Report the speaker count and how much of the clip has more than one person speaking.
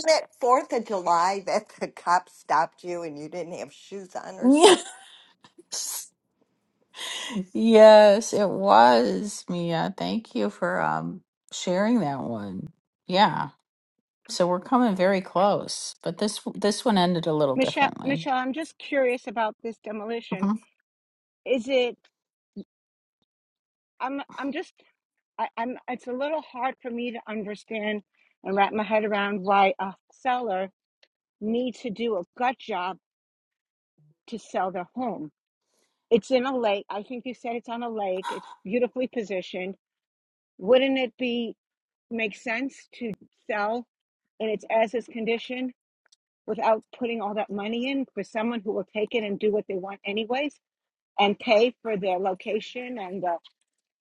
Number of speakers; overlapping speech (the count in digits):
3, about 2%